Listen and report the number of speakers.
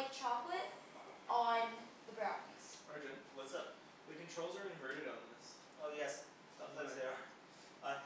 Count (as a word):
three